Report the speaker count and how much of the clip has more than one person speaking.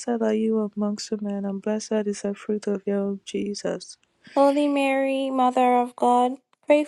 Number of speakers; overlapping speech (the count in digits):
2, no overlap